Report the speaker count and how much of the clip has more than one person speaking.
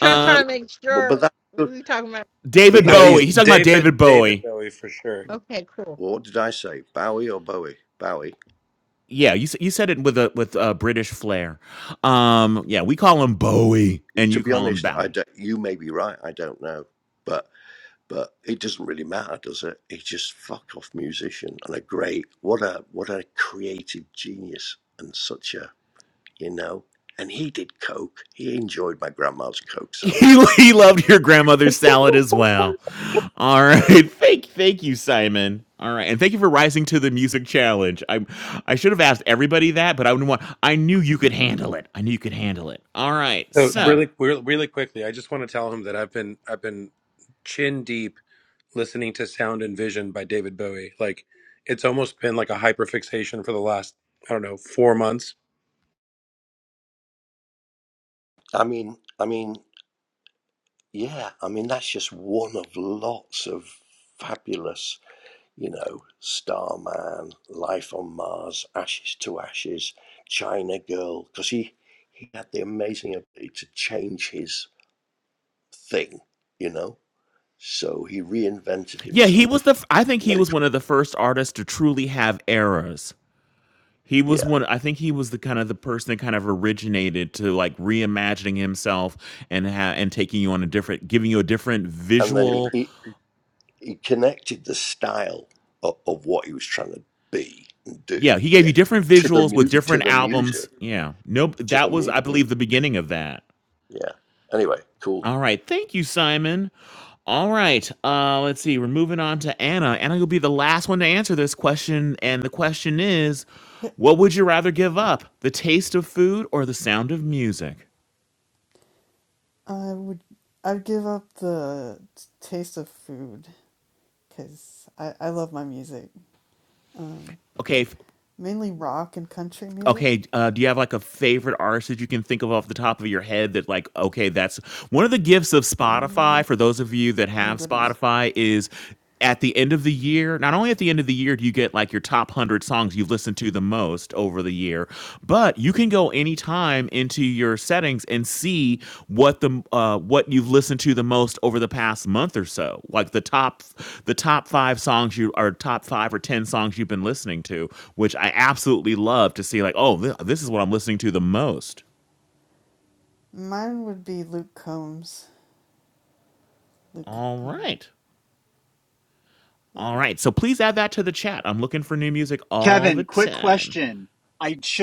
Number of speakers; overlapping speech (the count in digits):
6, about 6%